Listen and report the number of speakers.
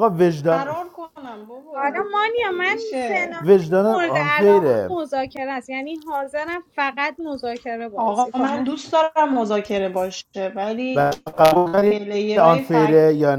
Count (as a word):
three